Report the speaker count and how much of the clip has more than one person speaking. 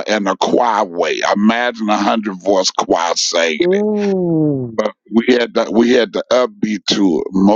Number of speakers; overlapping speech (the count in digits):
2, about 3%